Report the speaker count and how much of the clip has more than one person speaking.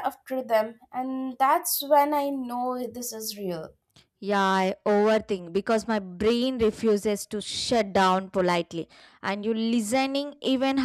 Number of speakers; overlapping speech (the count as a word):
two, no overlap